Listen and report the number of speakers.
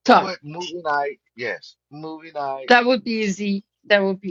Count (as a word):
two